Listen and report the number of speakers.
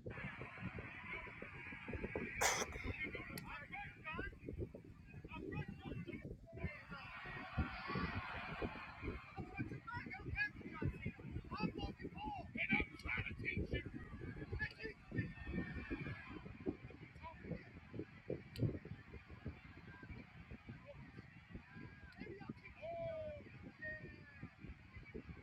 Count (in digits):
0